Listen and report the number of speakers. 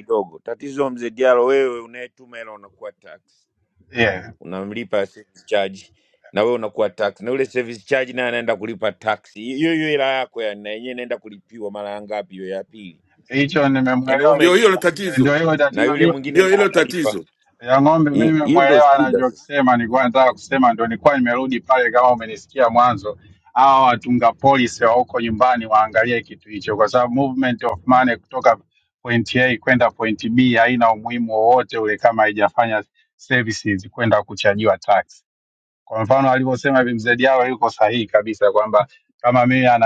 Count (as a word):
three